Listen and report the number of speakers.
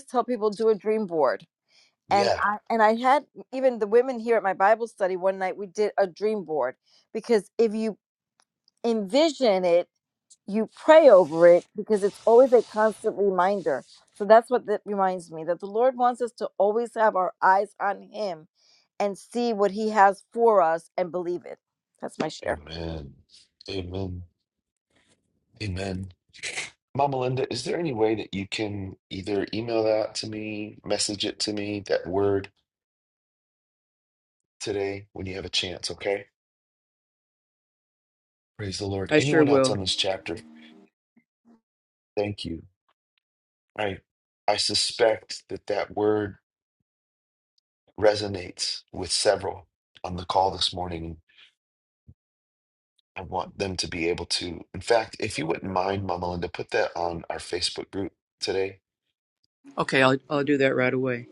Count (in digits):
3